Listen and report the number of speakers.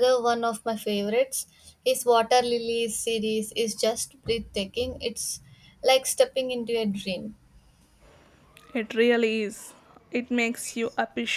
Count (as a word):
two